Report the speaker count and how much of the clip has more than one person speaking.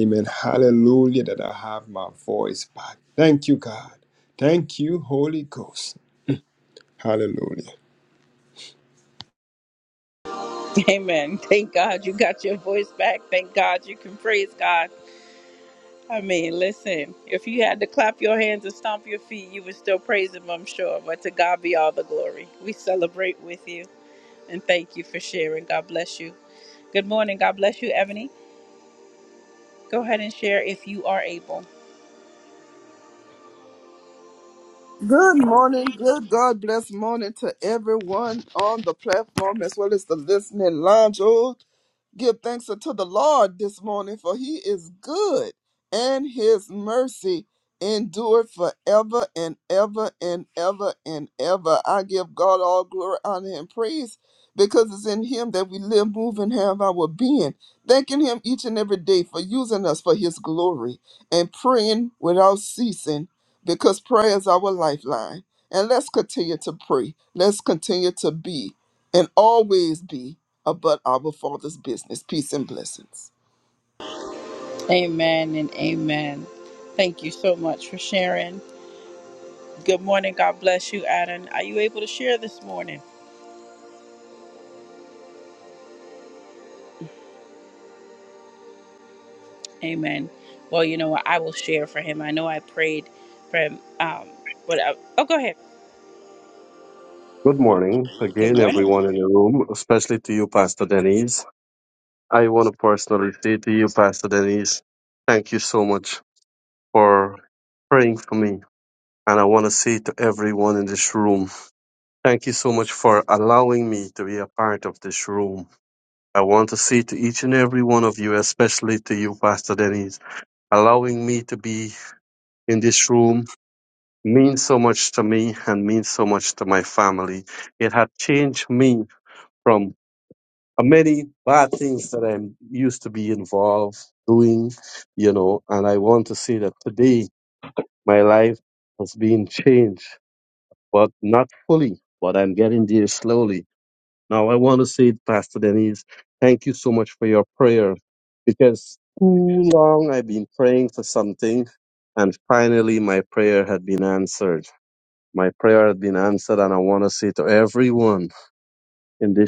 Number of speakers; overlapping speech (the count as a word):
four, under 1%